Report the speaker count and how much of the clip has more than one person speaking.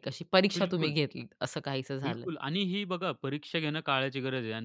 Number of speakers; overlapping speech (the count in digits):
2, about 14%